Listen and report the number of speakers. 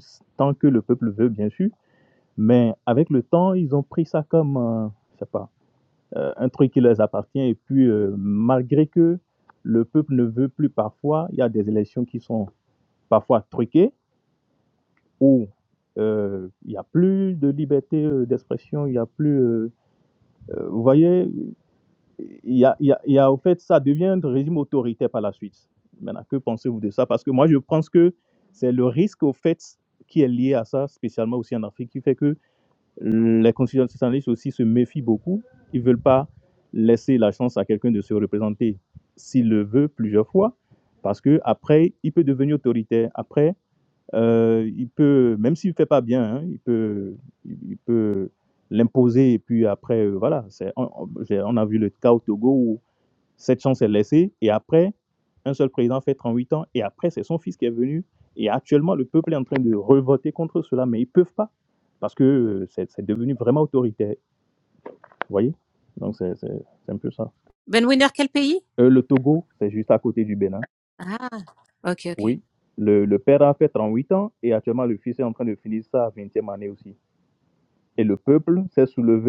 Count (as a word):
two